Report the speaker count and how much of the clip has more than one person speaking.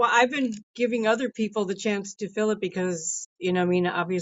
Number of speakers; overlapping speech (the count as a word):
one, no overlap